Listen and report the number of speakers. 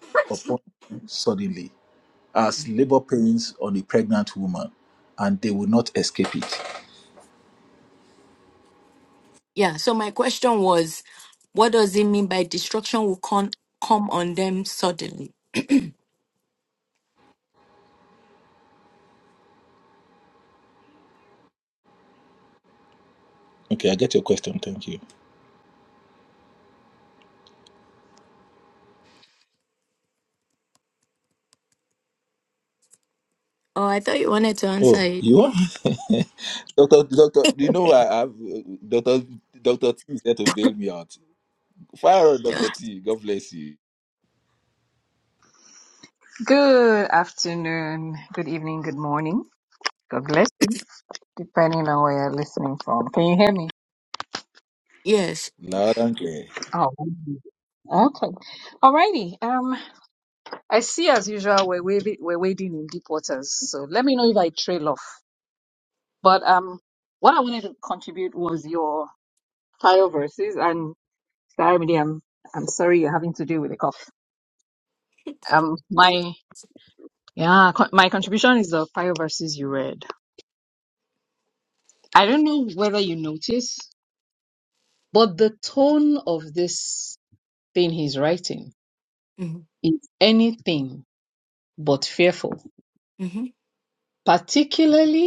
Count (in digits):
3